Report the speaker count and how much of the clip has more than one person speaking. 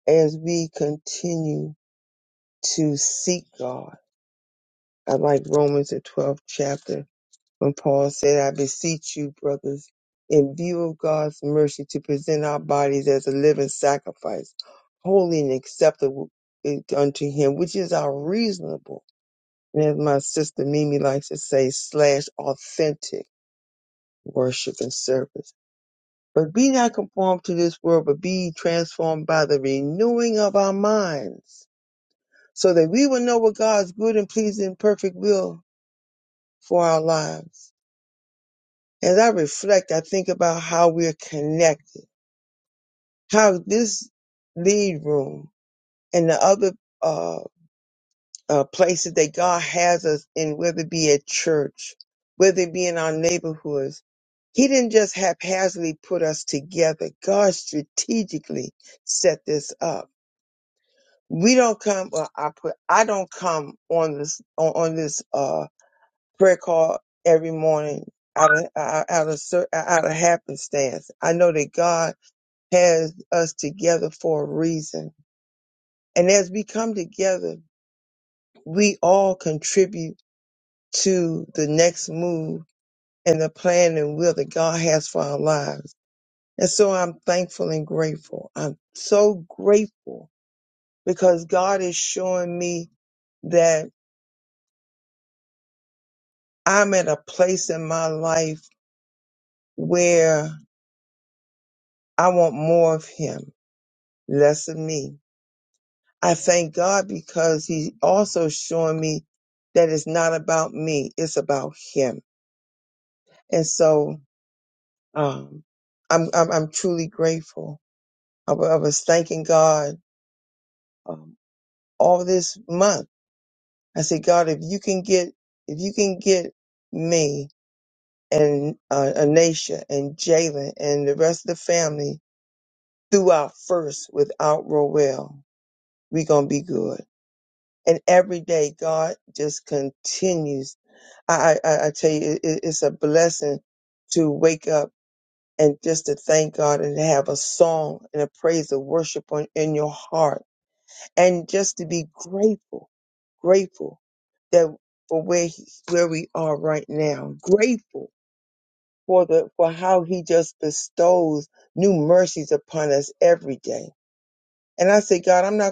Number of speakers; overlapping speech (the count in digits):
1, no overlap